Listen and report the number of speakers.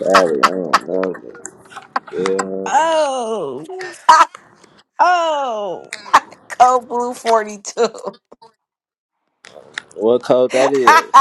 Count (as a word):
three